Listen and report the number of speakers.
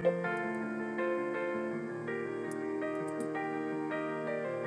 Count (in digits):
0